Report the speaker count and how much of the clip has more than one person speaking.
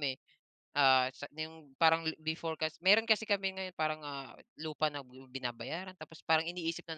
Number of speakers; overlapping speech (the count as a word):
one, no overlap